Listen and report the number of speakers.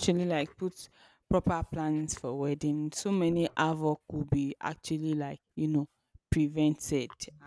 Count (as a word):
one